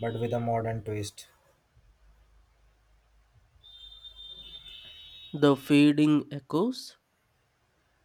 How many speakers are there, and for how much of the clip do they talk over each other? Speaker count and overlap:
2, no overlap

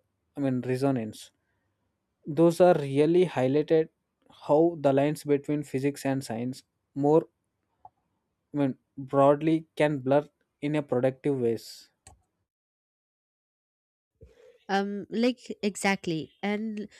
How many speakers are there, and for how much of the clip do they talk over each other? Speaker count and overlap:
2, no overlap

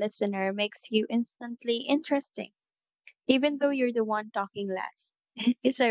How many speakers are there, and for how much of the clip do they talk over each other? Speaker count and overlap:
1, no overlap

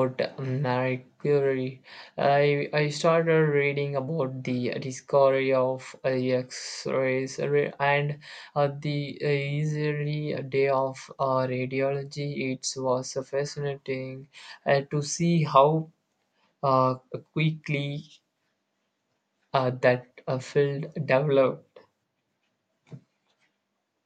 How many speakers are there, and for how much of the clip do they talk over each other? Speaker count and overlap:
1, no overlap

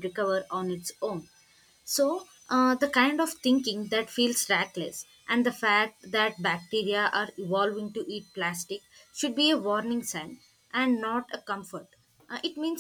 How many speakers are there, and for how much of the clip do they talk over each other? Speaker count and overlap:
1, no overlap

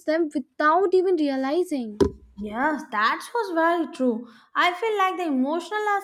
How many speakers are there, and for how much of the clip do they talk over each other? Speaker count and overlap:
2, no overlap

